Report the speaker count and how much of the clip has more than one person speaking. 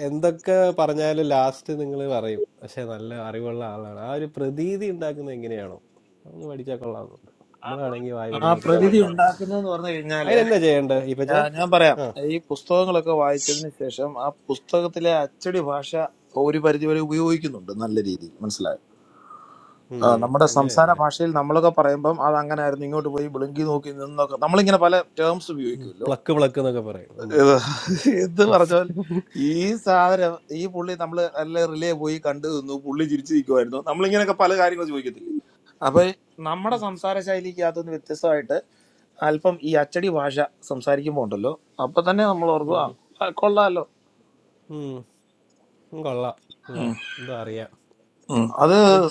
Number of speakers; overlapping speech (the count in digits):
2, about 7%